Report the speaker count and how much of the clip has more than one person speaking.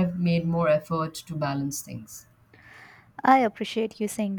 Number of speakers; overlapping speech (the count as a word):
two, no overlap